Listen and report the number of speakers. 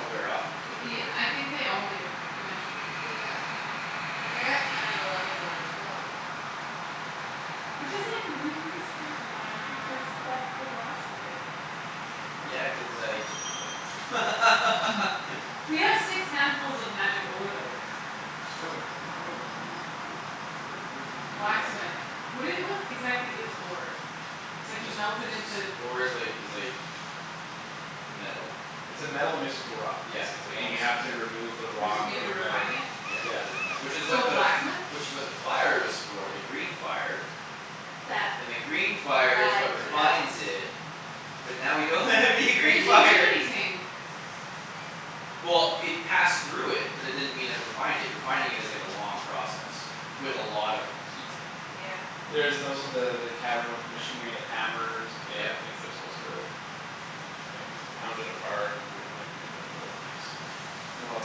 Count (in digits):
4